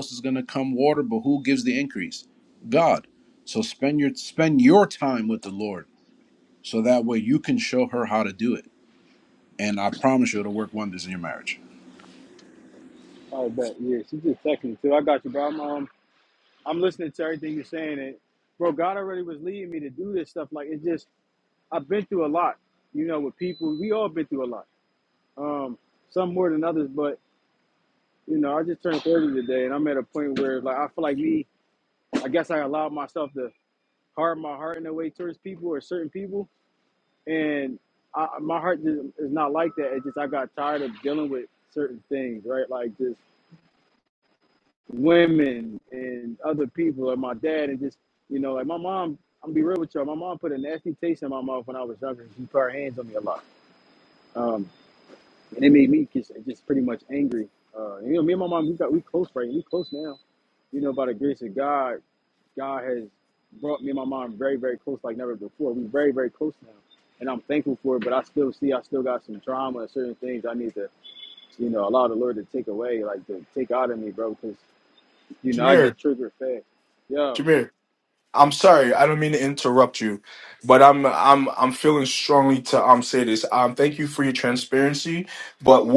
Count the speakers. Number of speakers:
three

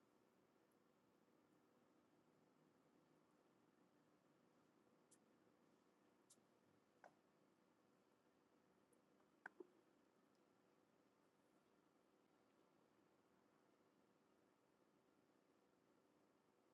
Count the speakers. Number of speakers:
zero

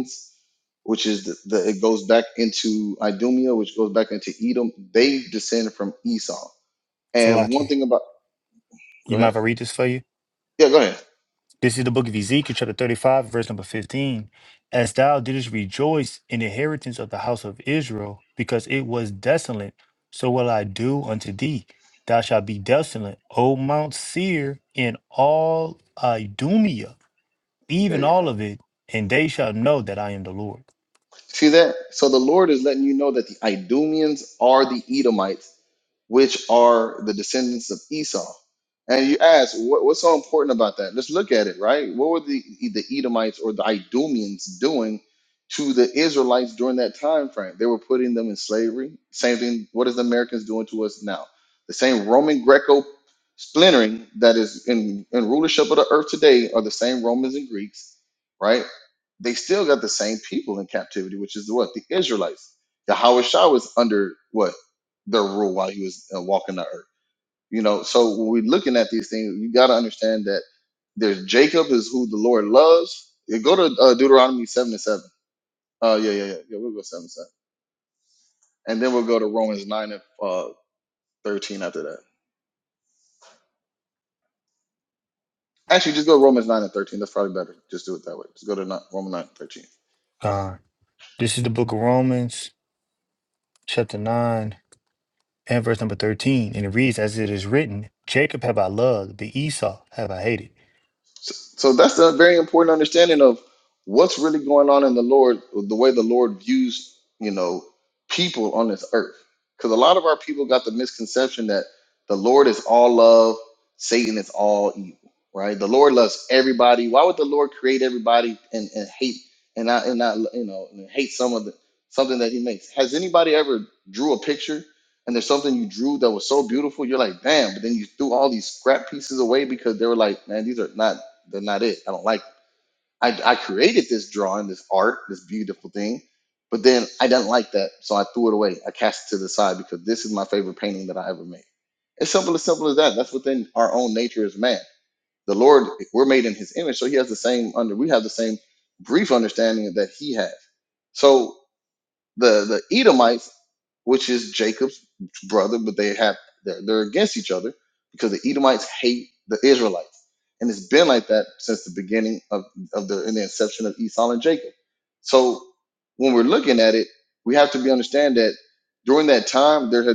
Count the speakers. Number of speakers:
two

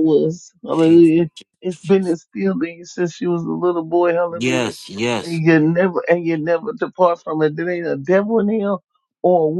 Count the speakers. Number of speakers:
two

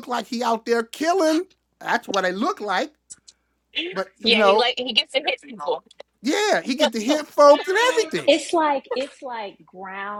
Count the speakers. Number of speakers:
three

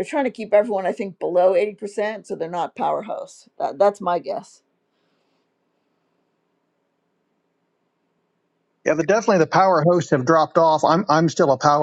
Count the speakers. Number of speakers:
two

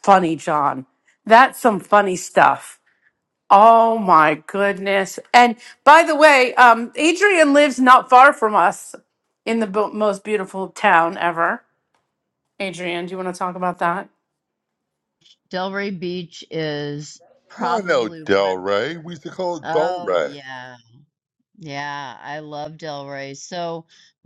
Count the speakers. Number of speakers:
three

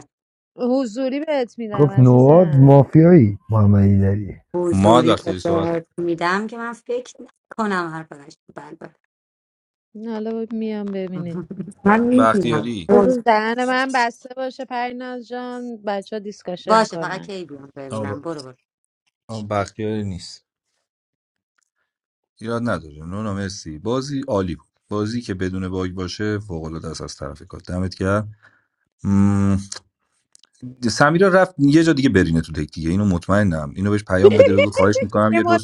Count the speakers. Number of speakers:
four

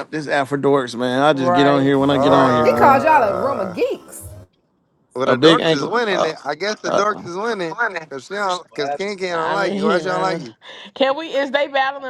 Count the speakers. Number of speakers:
four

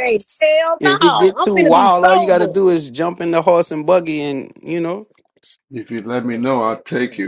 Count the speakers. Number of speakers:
three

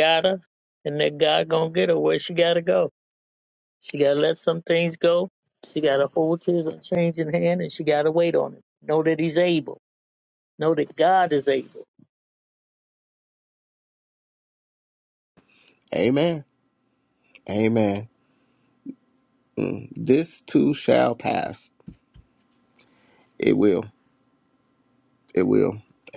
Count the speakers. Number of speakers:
two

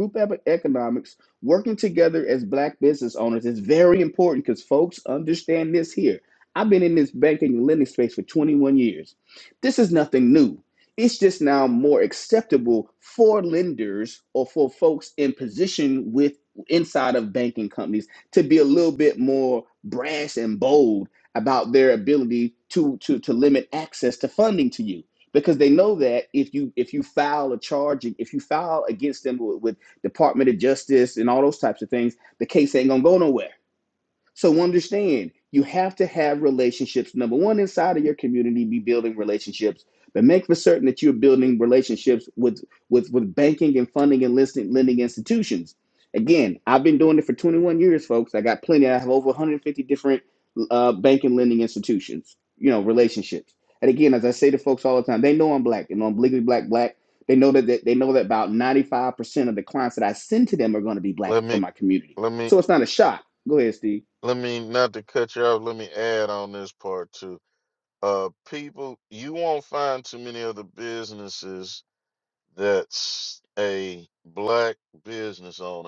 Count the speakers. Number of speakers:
two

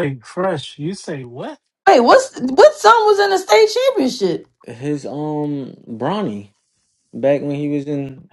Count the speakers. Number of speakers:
three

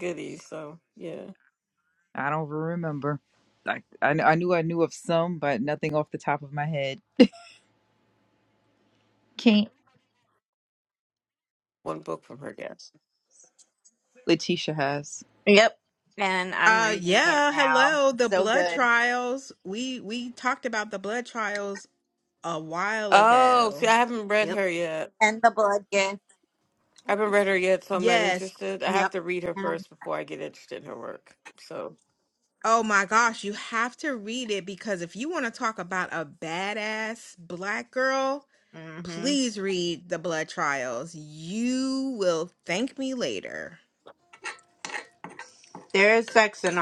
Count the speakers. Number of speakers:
four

